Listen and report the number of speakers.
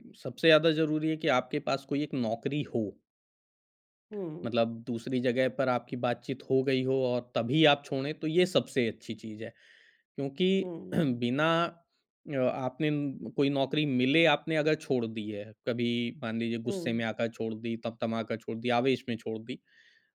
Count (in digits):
2